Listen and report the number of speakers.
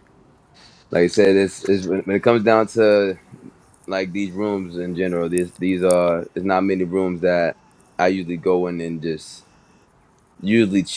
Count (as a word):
one